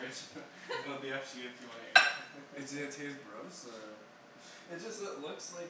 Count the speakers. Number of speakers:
2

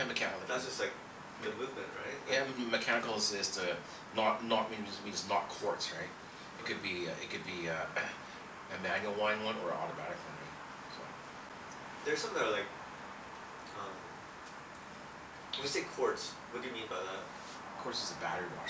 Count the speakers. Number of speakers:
2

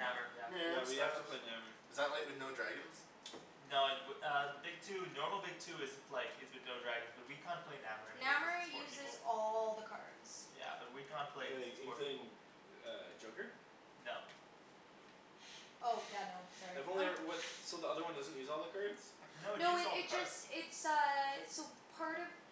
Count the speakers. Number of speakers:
4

